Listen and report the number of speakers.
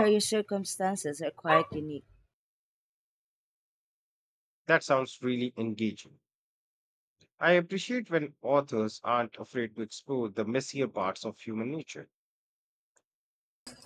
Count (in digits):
2